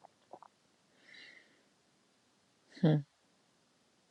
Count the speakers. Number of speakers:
zero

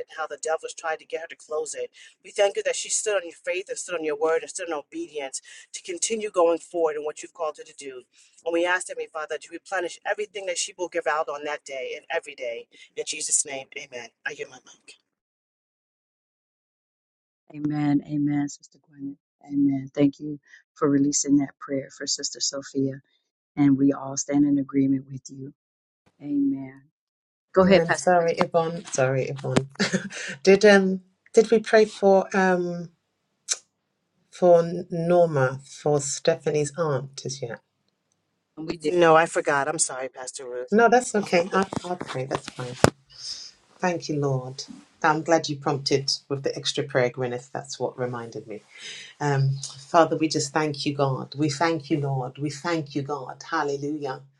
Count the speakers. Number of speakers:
three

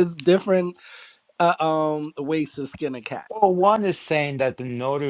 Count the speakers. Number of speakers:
two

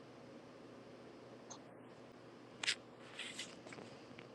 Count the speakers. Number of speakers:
zero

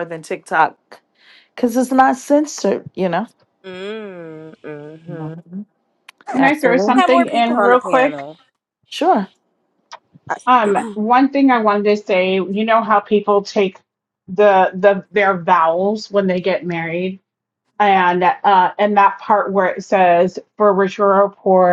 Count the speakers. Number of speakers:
three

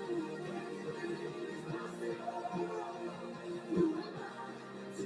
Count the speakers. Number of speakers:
zero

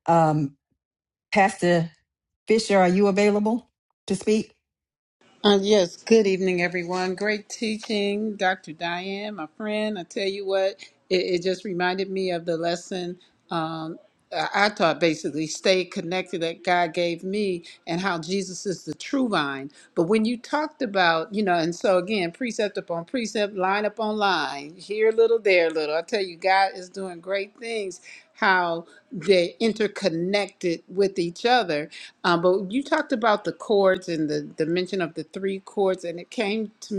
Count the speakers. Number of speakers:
two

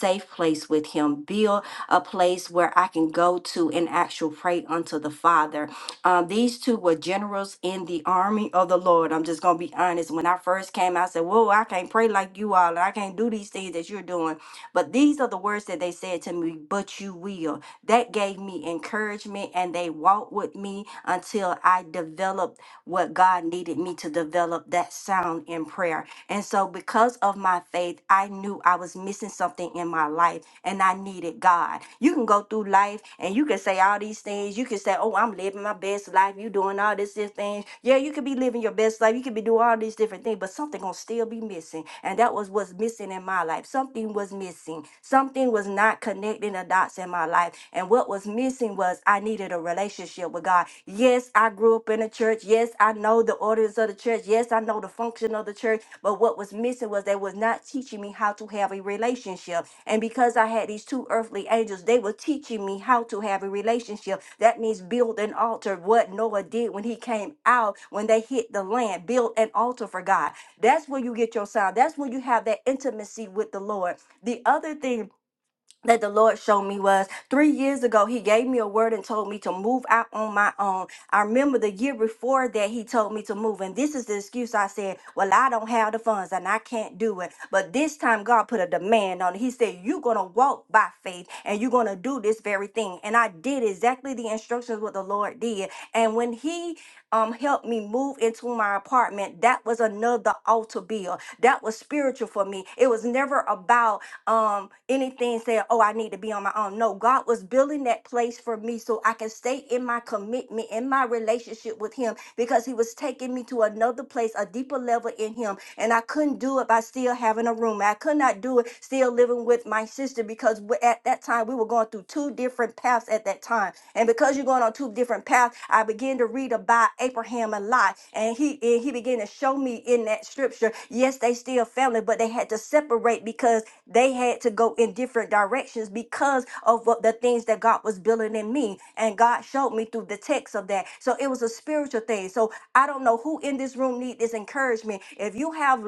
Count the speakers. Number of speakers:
one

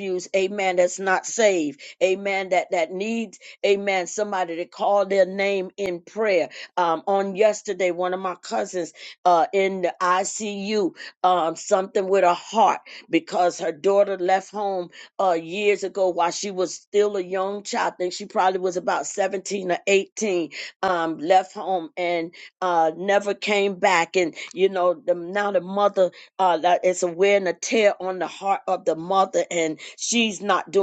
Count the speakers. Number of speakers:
one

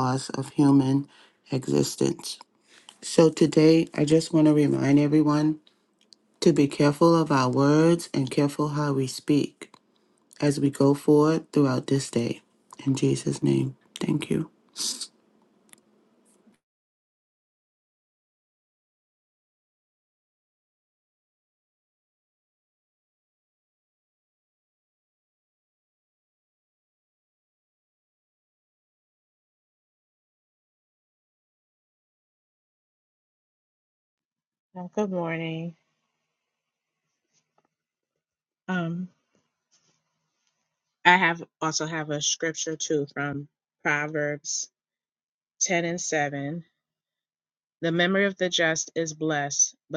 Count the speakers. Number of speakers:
two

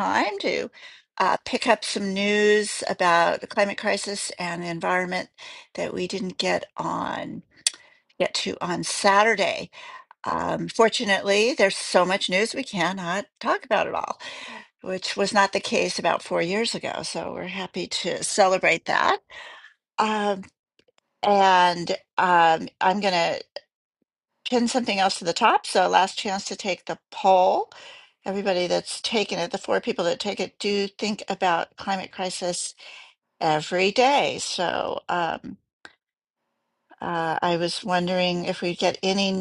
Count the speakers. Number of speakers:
one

